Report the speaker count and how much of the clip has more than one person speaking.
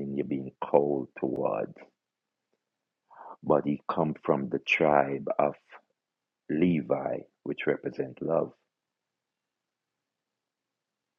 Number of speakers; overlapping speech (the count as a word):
one, no overlap